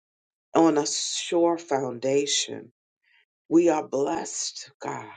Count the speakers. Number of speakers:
1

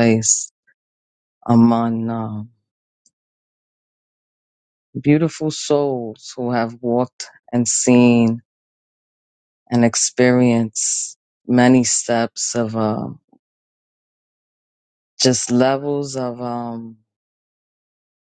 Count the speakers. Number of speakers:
1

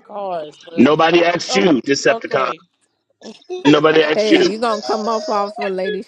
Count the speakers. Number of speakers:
3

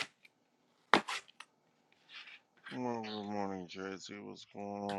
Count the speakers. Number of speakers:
1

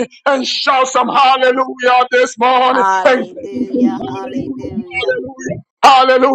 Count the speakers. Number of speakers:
2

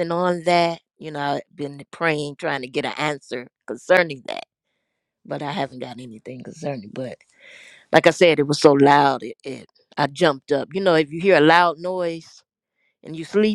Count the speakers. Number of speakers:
1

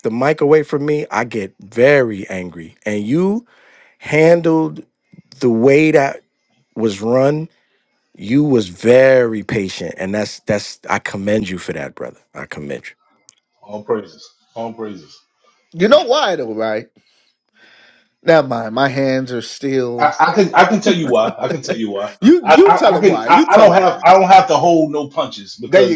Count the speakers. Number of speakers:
3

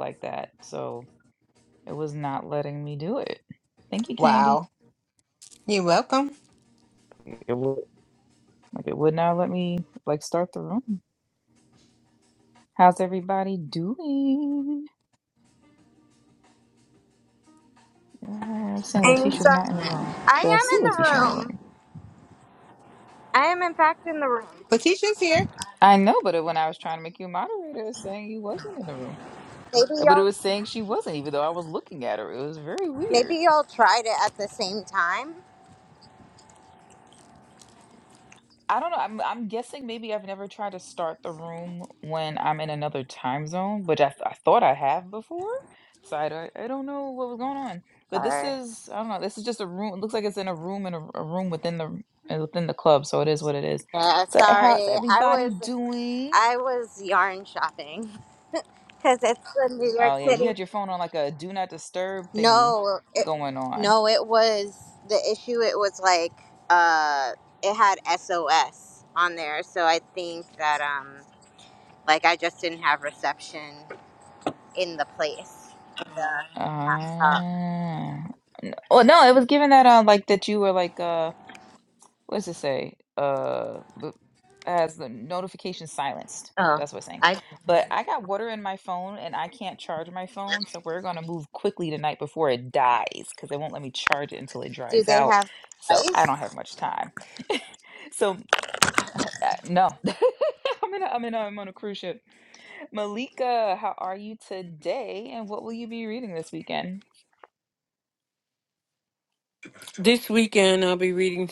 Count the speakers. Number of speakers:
4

